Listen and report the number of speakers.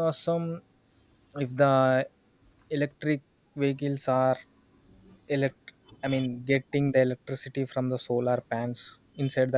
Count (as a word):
one